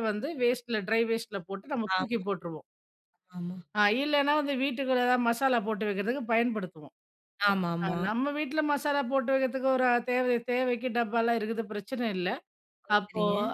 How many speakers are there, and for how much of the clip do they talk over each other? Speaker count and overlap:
two, about 5%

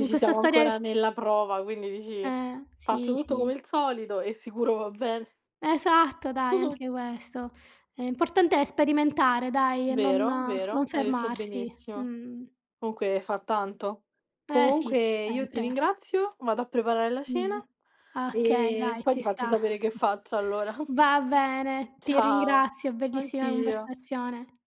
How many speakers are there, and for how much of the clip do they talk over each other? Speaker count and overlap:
two, about 28%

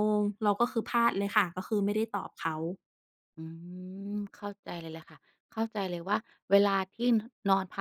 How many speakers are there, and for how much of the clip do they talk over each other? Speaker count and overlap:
two, no overlap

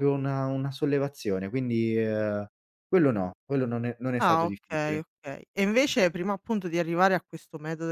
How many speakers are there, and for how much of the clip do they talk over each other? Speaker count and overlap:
two, about 10%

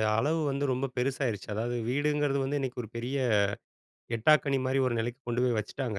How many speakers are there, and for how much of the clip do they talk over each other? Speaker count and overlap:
one, no overlap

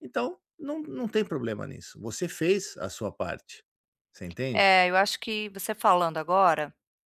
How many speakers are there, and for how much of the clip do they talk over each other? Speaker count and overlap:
two, about 2%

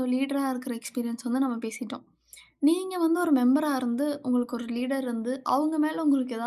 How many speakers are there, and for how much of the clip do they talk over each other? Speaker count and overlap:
one, no overlap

